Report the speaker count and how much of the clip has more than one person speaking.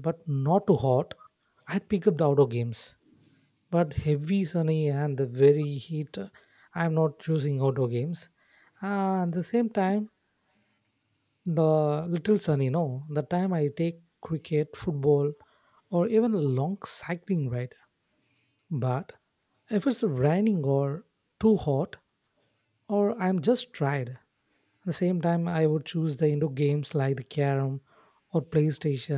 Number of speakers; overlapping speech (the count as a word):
one, no overlap